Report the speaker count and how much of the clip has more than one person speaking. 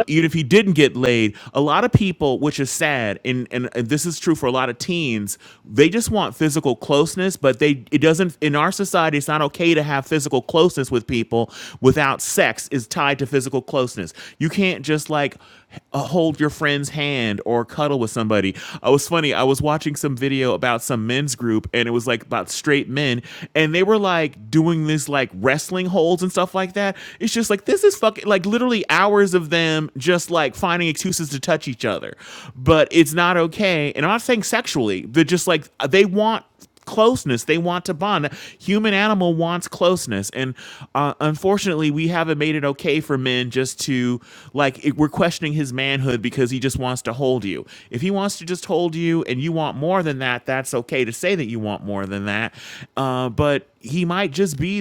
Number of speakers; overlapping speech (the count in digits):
1, no overlap